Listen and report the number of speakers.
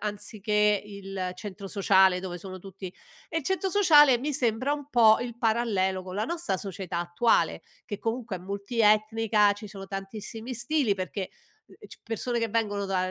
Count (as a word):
one